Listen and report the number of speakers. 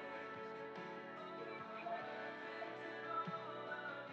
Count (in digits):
0